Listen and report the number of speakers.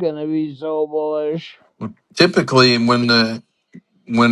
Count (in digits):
2